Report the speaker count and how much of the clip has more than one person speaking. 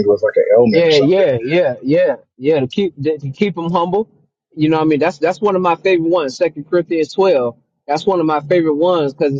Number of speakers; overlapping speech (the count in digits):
2, about 6%